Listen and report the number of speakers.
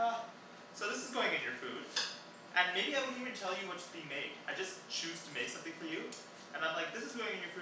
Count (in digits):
1